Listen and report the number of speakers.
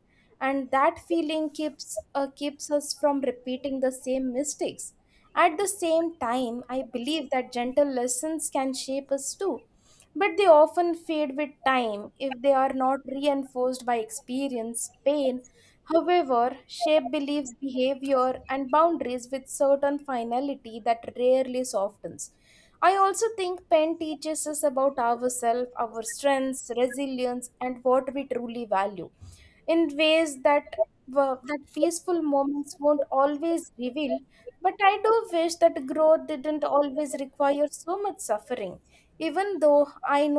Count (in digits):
1